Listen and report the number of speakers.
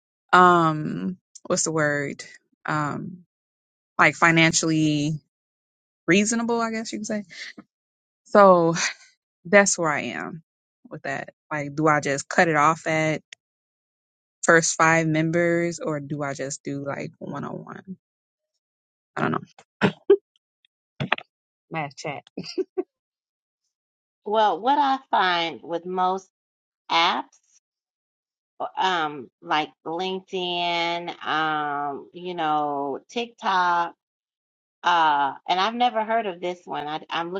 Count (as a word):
two